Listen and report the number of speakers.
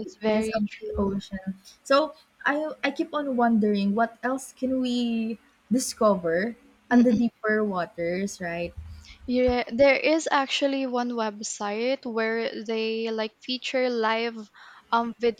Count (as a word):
two